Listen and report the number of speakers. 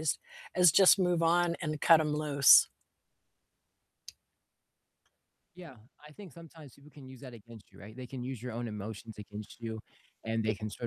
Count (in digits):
2